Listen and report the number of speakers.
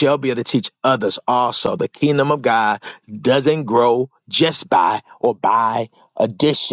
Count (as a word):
one